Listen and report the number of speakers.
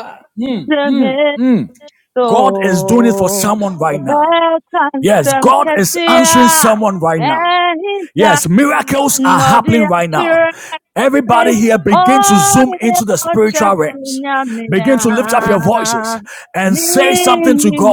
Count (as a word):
two